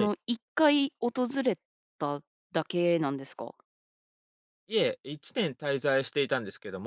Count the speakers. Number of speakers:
2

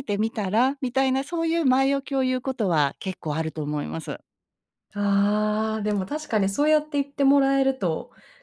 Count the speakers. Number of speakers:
2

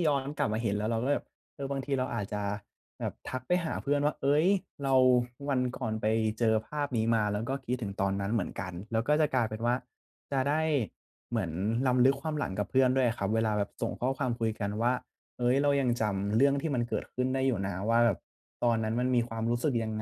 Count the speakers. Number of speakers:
1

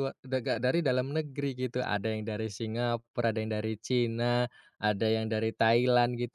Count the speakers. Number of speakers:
1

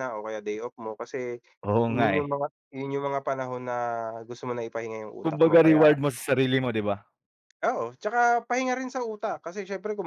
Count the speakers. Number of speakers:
2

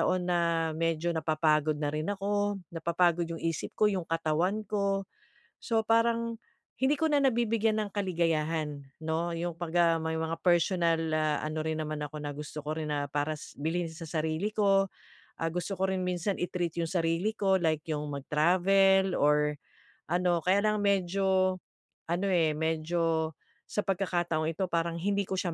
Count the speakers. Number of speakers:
1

